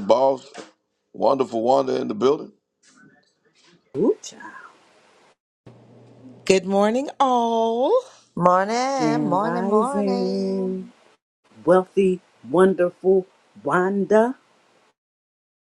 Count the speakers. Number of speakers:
four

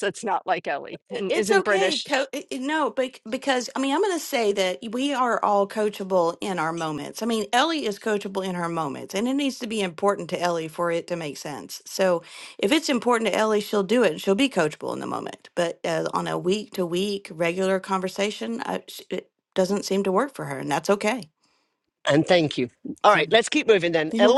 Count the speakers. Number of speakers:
three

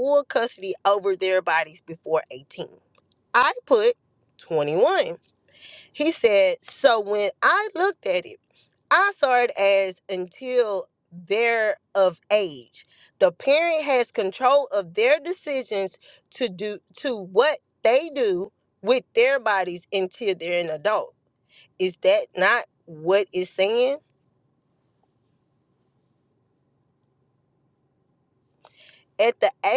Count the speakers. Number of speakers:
one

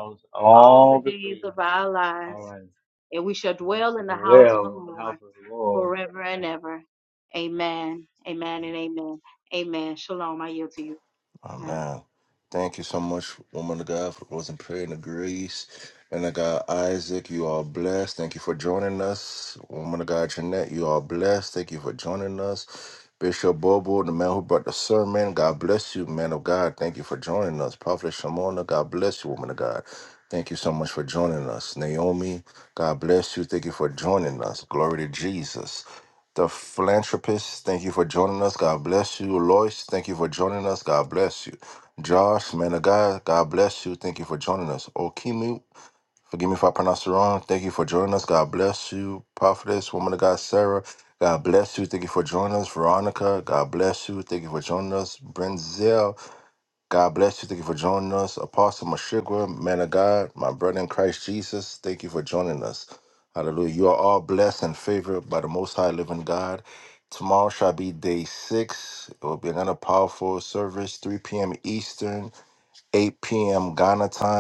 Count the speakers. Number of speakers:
three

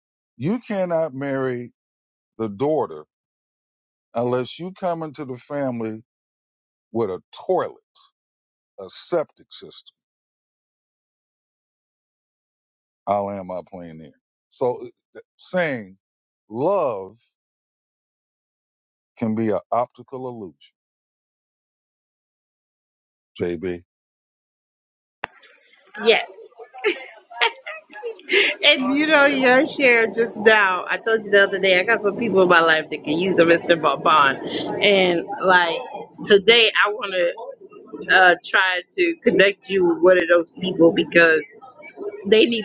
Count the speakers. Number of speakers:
two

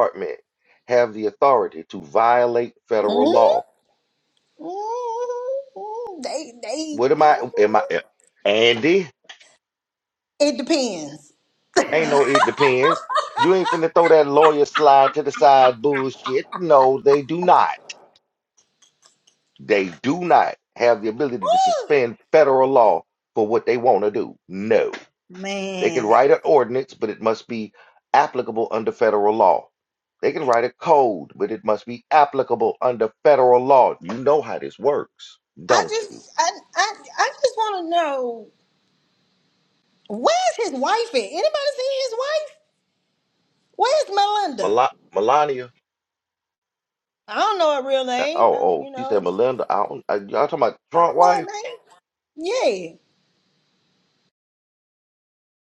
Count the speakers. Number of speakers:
two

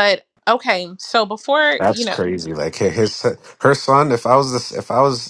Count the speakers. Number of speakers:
two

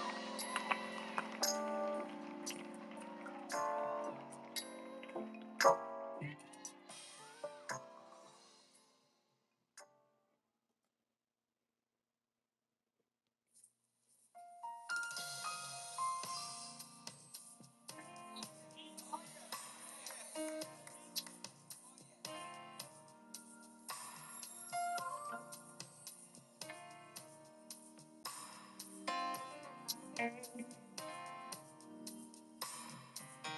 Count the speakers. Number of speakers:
zero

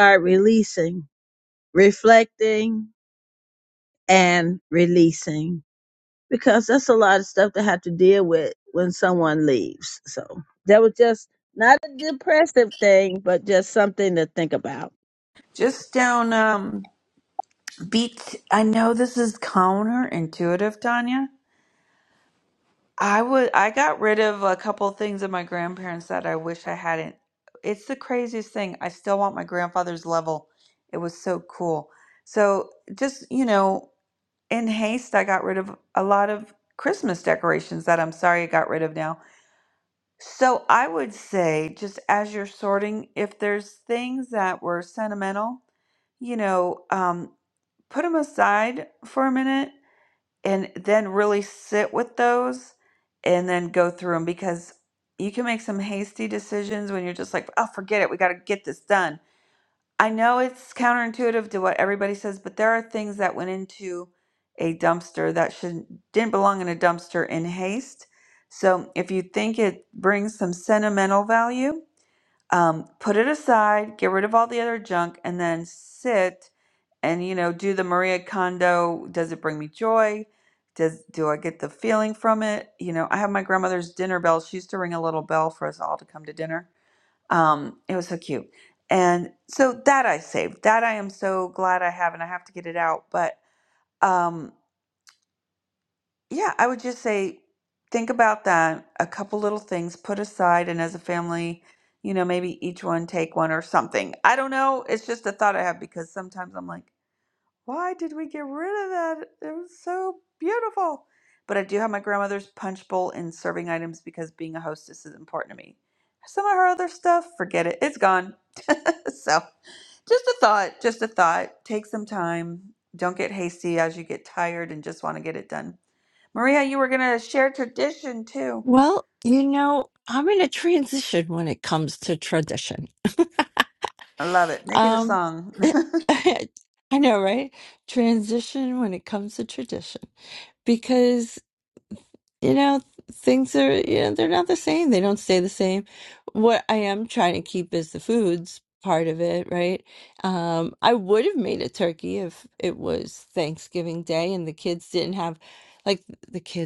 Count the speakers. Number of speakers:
three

